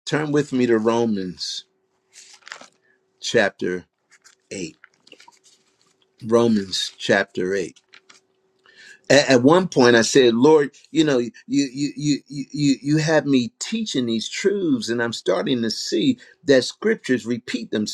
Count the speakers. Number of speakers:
1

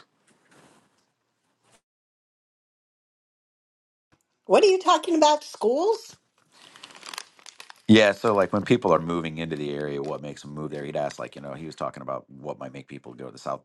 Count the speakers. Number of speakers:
2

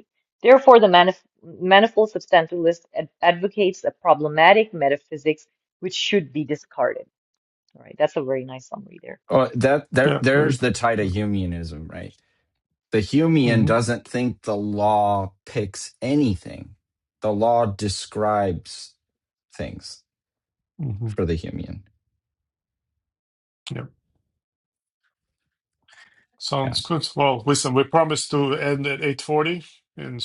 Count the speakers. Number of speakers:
3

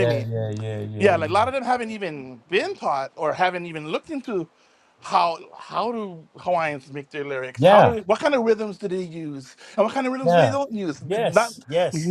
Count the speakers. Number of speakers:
2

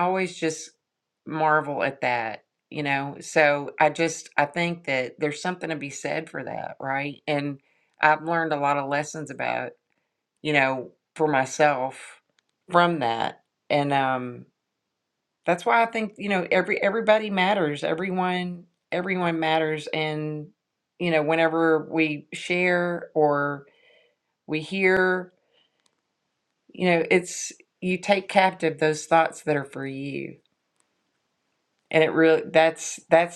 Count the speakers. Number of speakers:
1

